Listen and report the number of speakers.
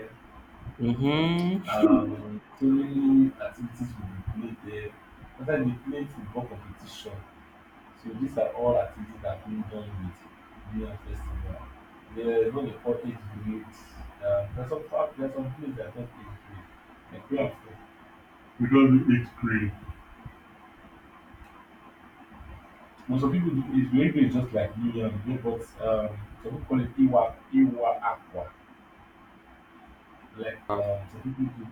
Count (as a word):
two